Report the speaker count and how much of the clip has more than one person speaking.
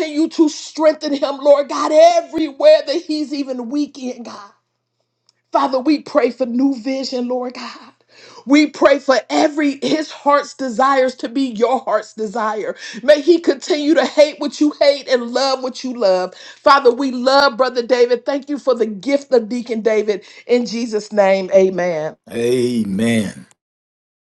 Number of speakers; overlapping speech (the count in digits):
2, no overlap